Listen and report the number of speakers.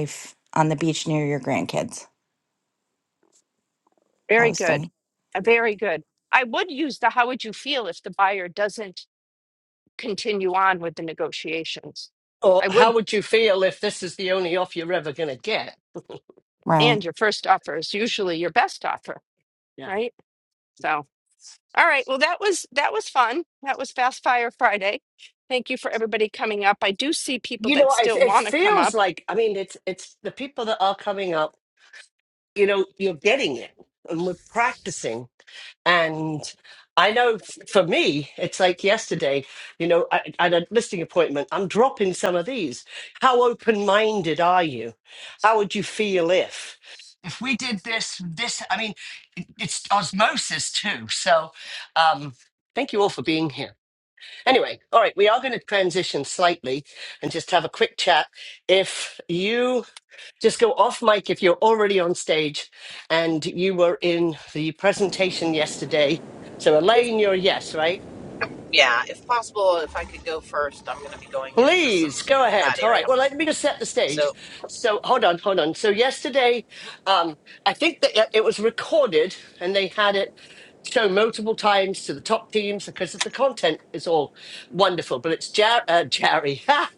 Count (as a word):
four